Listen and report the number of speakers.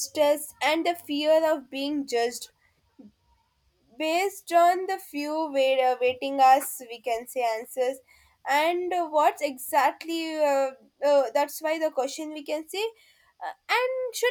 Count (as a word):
one